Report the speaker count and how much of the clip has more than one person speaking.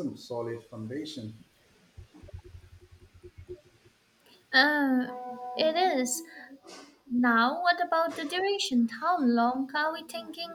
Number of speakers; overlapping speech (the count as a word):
two, no overlap